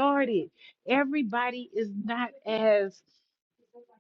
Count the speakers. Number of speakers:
one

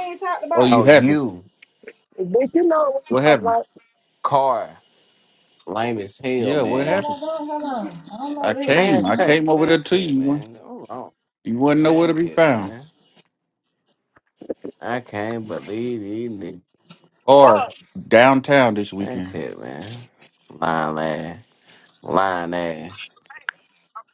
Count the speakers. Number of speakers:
four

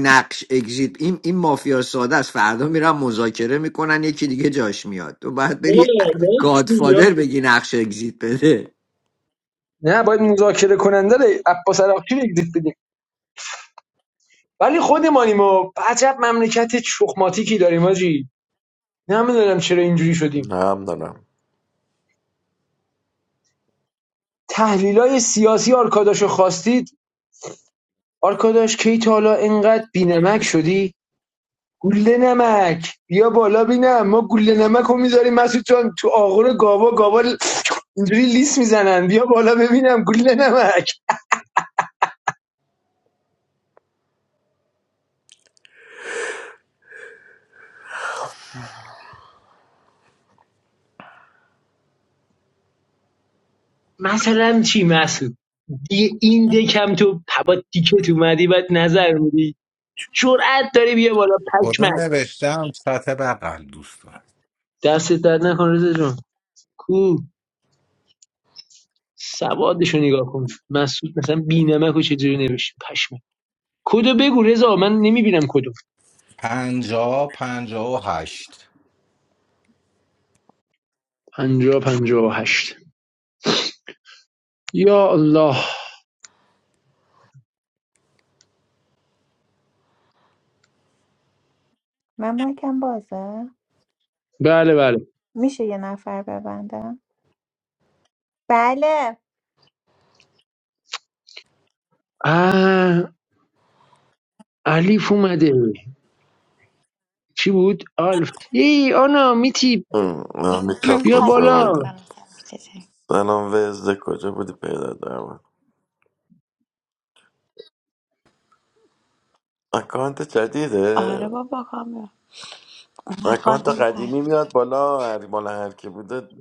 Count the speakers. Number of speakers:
six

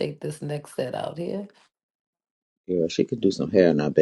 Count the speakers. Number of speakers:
two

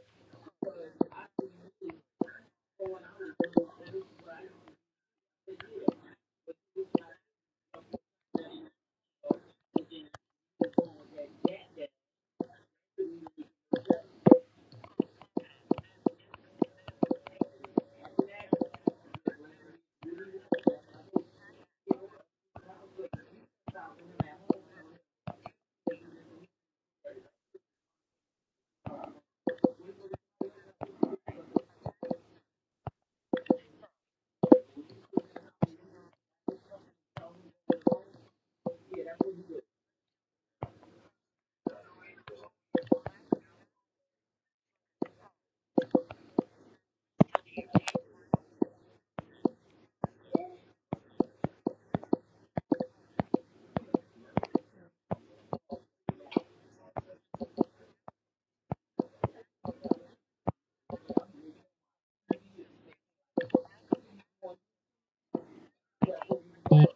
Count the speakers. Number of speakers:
zero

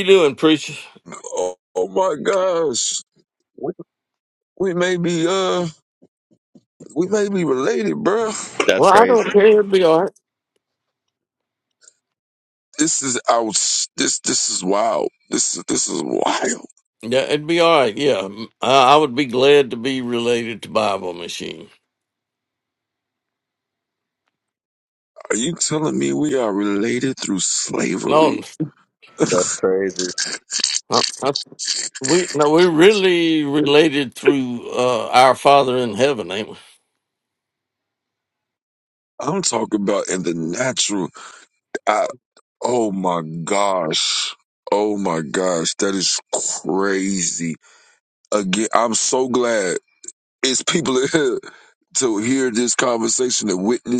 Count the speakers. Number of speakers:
three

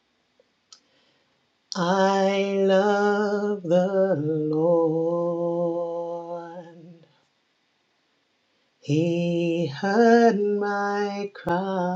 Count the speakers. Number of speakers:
one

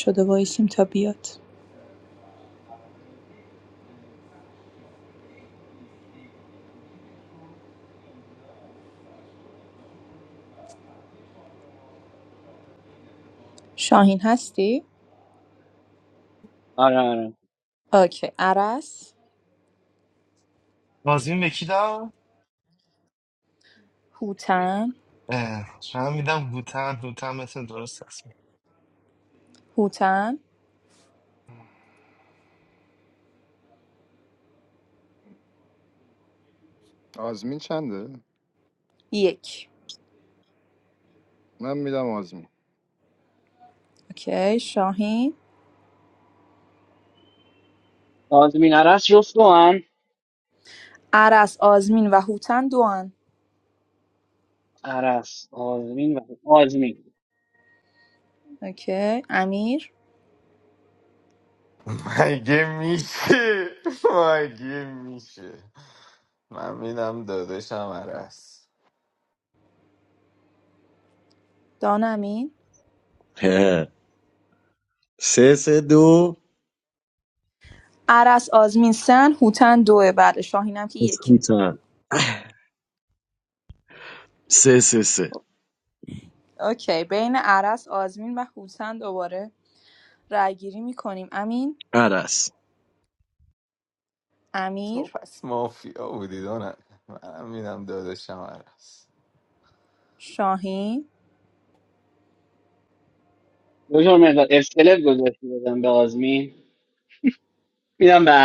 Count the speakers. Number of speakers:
six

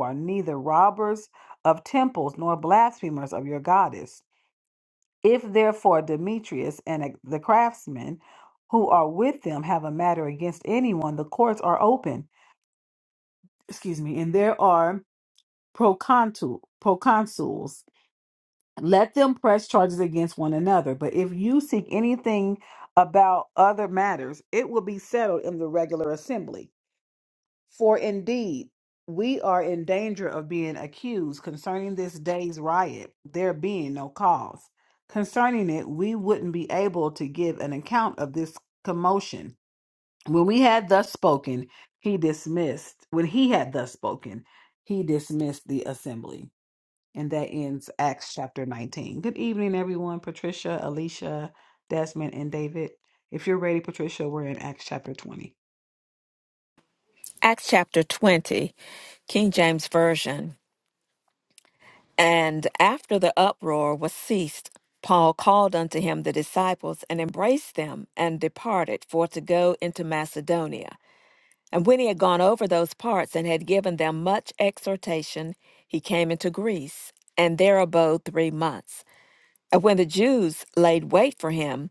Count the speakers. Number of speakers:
two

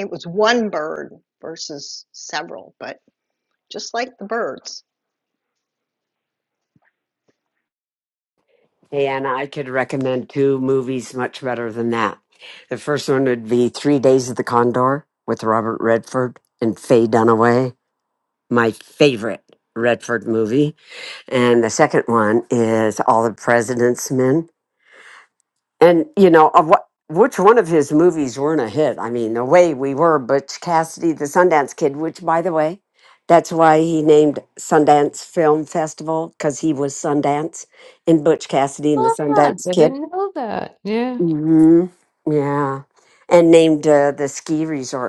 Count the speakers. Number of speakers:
three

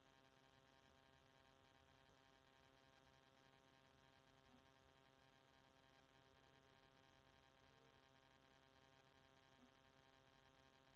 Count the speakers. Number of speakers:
zero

